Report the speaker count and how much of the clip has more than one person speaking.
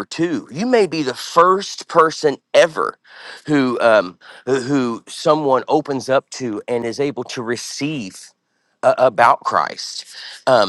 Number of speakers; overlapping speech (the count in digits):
1, no overlap